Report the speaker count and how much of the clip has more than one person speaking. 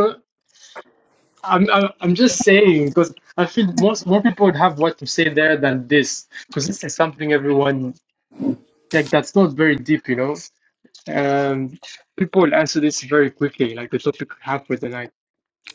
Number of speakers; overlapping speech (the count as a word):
one, no overlap